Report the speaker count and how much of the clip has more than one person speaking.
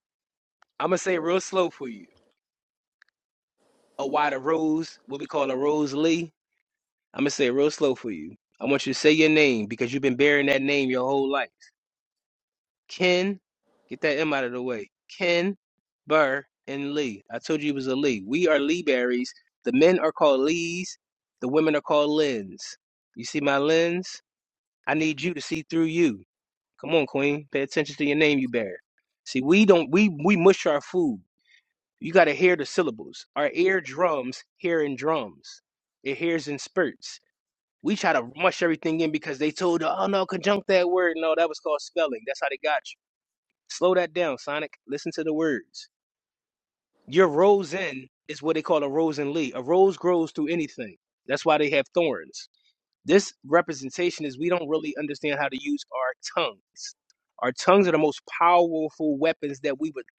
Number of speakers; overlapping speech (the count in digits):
1, no overlap